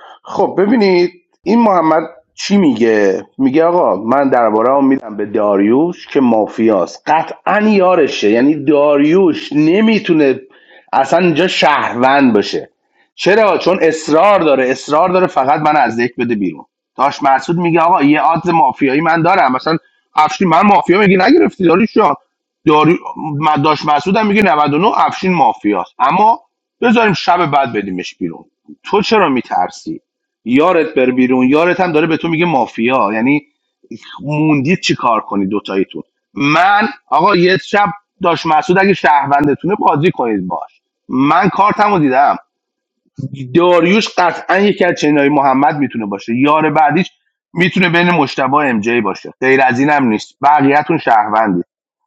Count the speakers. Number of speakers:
1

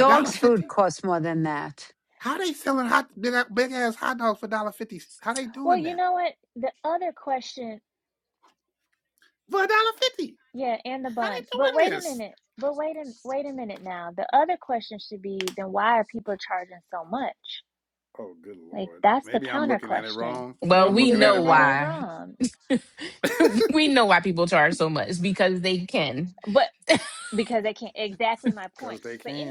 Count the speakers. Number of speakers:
4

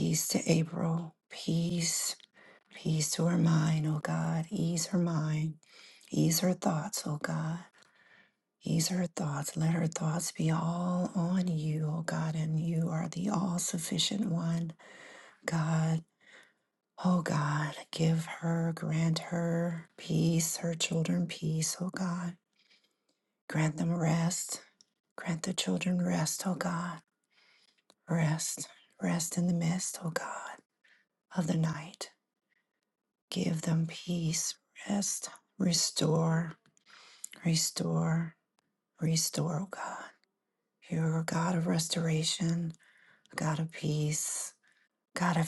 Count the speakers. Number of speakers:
1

